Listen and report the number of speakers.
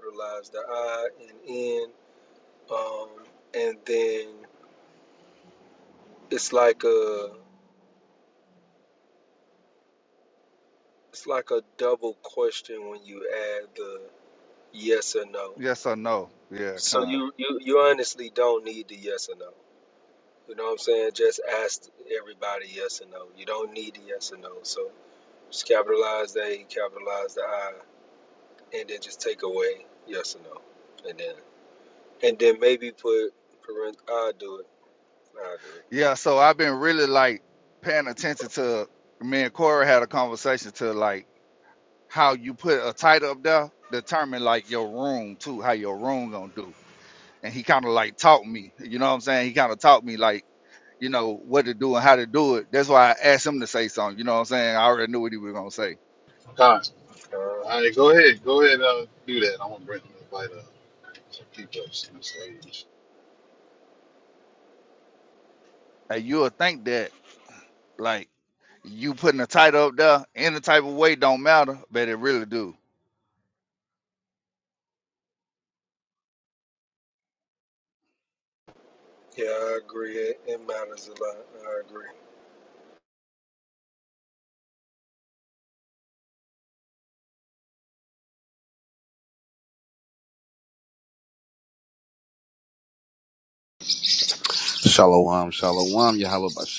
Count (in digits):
4